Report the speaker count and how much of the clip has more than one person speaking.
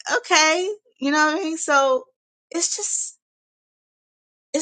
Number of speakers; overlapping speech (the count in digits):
1, no overlap